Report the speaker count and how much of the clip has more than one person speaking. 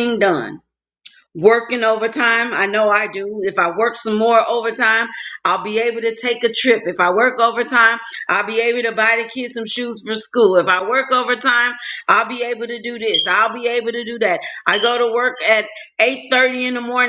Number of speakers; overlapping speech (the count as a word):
one, no overlap